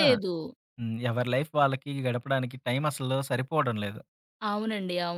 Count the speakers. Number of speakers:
2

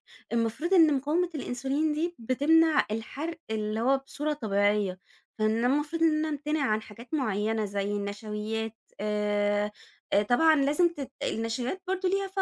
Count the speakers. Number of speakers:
1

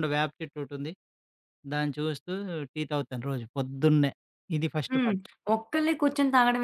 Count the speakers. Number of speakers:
2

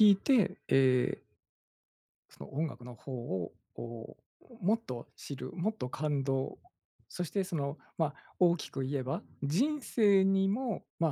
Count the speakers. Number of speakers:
1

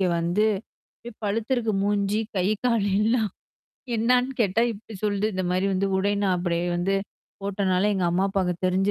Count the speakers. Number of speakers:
1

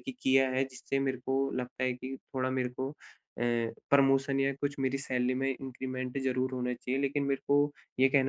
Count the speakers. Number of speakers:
1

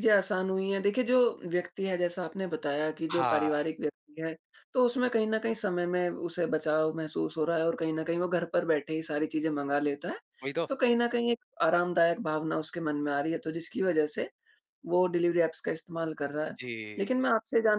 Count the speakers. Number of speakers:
2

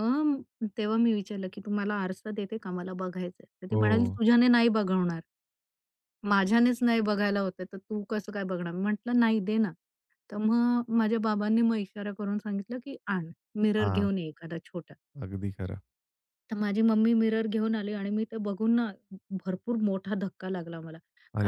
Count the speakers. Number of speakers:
2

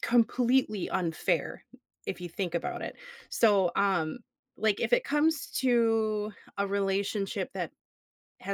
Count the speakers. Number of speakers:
1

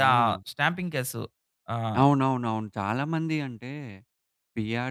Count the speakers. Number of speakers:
2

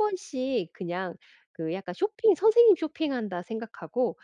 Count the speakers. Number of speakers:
1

